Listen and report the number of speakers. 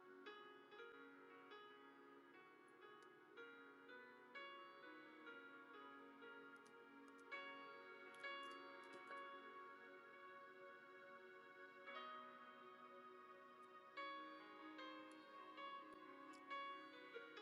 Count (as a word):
zero